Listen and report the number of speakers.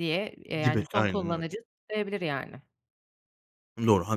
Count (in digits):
2